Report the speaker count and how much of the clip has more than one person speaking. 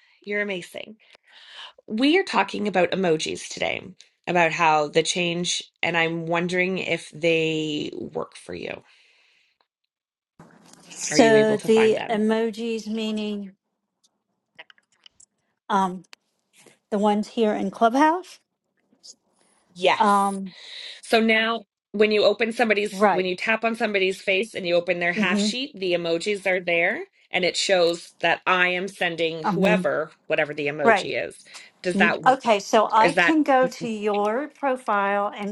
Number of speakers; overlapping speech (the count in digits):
2, about 9%